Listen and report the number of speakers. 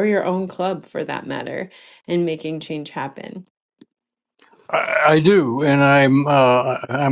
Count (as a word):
two